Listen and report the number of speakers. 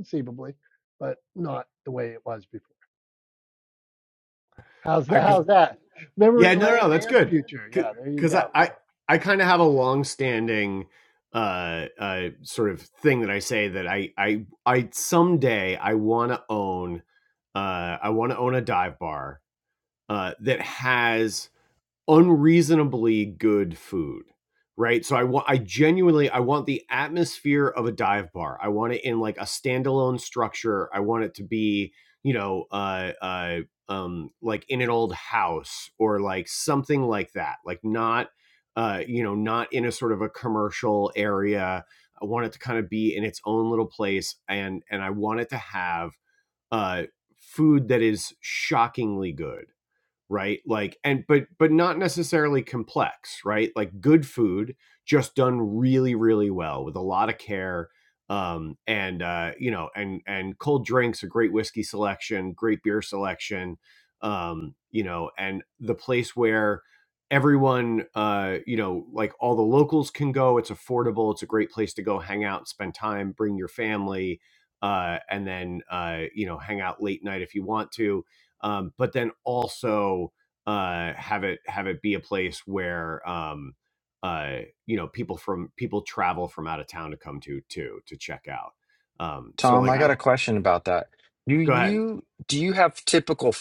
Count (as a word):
three